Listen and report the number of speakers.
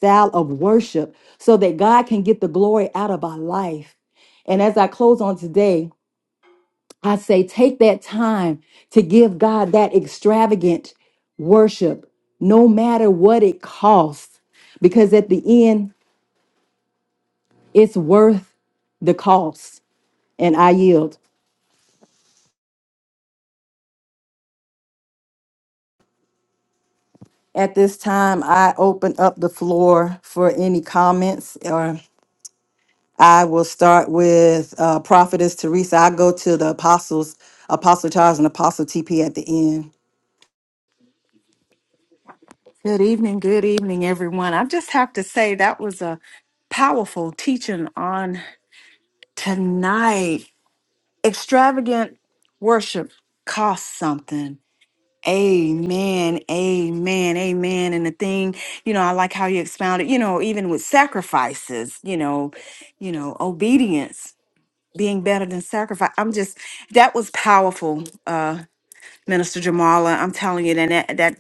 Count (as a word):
two